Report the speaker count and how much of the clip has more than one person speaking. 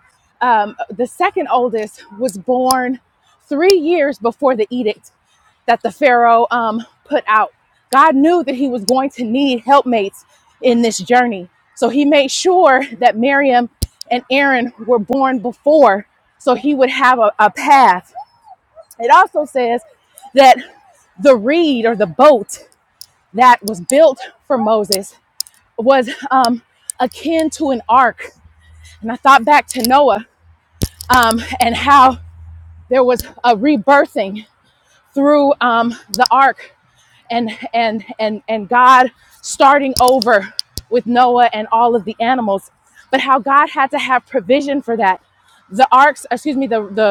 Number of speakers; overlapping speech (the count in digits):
1, no overlap